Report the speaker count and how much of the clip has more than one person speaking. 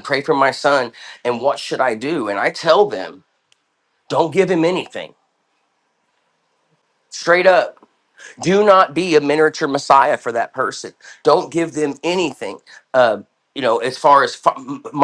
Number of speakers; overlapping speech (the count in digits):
1, no overlap